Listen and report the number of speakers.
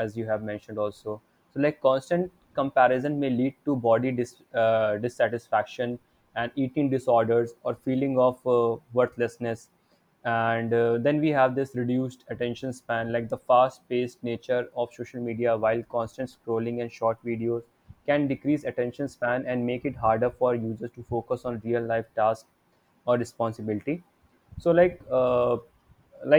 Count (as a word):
one